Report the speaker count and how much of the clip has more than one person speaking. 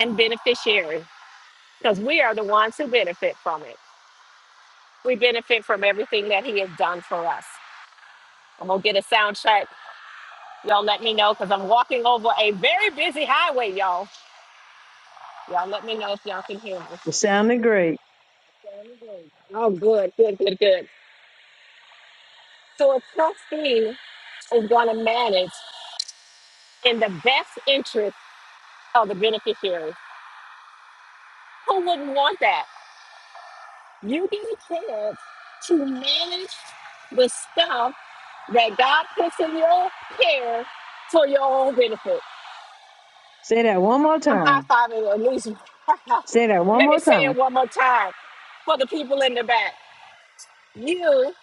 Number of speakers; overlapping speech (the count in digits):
2, about 2%